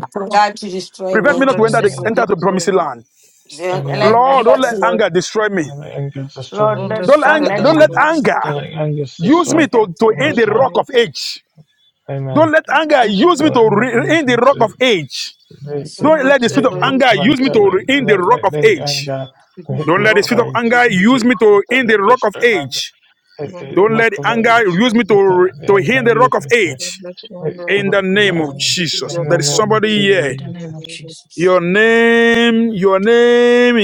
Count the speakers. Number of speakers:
four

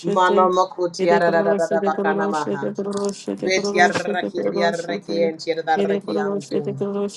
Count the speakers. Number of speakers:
two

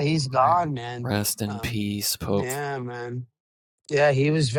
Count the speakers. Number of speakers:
two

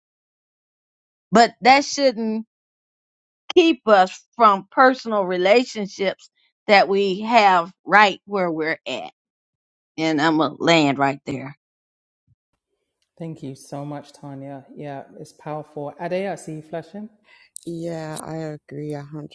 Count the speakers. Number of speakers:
three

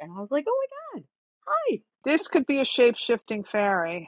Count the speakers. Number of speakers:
two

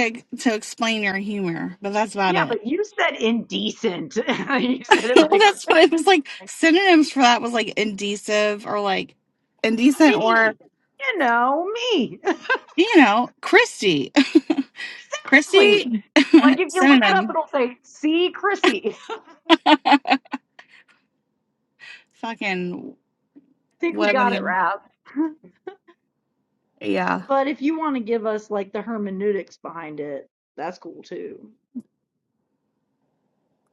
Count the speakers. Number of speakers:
two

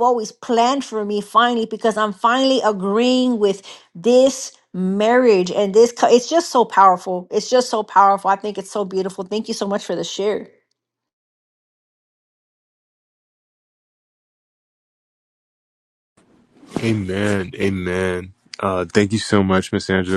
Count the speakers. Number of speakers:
two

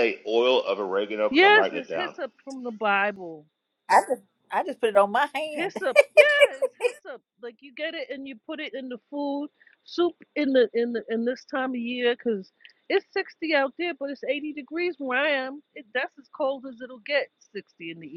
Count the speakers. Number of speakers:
three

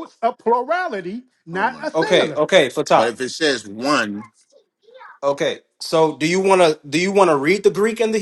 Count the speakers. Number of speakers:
three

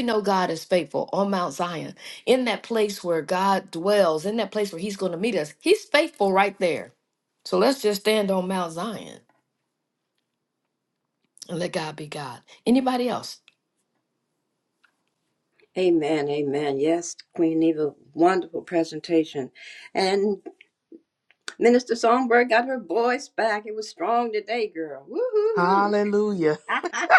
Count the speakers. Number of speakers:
three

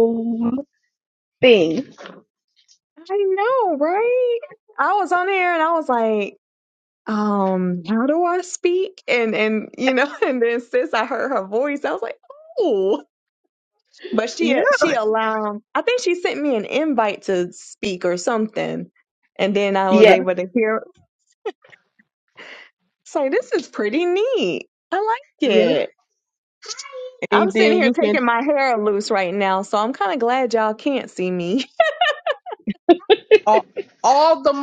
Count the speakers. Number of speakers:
three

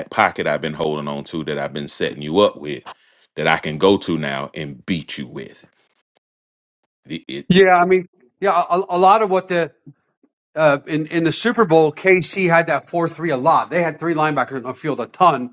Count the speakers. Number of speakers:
two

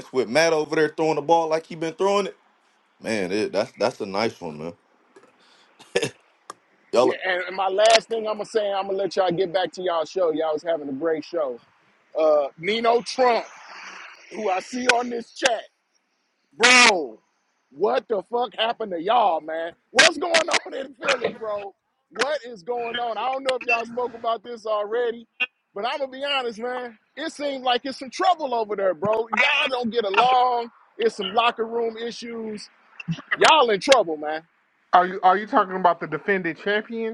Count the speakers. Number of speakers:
three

